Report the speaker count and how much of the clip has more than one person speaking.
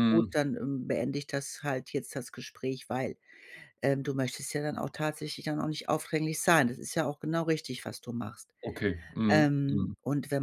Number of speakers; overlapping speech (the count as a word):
two, about 9%